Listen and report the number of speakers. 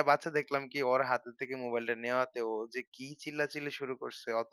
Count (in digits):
1